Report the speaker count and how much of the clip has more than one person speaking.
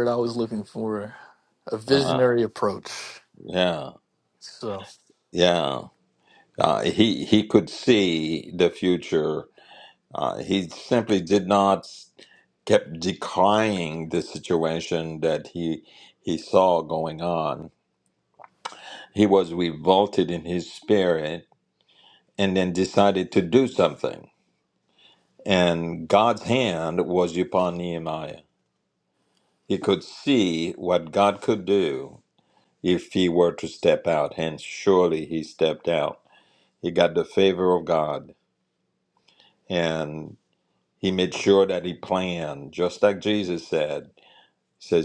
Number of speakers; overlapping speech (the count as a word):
two, about 1%